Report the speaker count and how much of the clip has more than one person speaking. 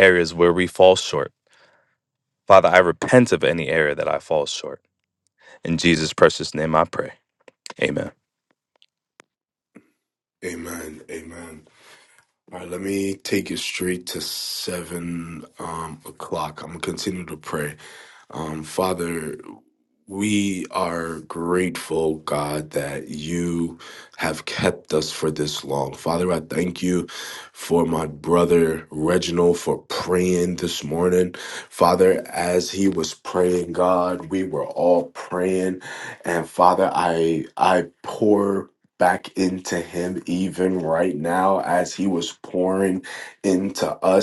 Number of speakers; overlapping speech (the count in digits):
2, no overlap